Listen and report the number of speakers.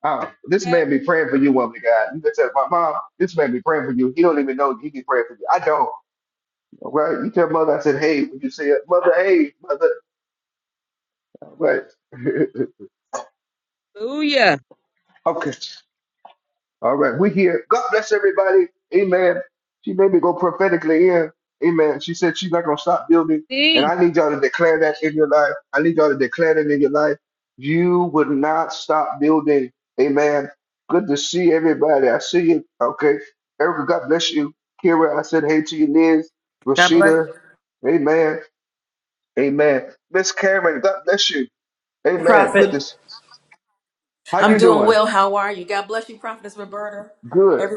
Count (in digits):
3